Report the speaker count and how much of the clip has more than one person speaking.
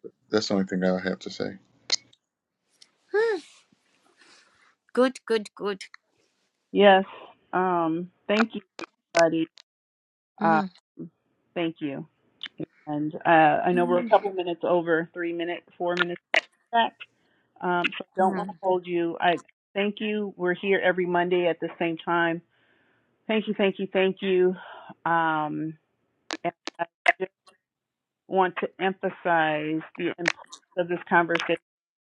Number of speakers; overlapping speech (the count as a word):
three, about 3%